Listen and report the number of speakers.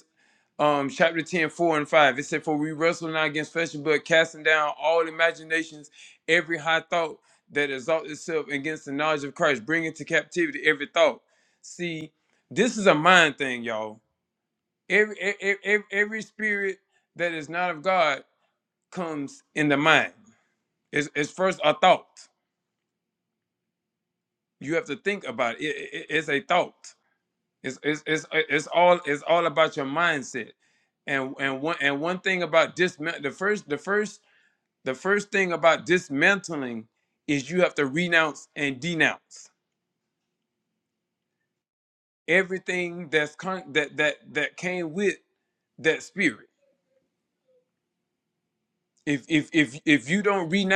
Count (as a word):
one